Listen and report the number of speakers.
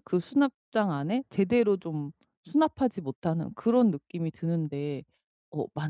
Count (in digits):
1